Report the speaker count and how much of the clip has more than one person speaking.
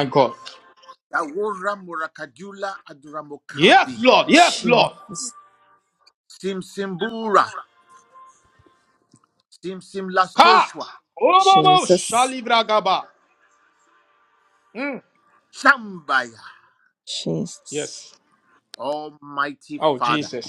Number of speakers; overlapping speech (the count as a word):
three, about 11%